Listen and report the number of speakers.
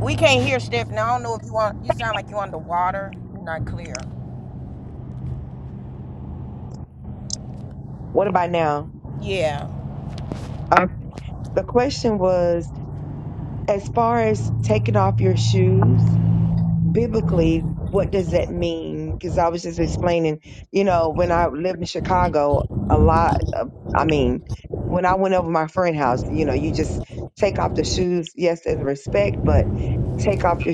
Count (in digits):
2